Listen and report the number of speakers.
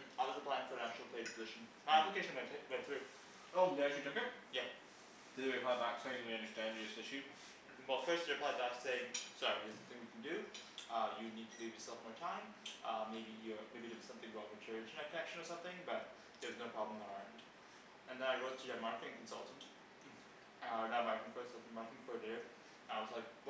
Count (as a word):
two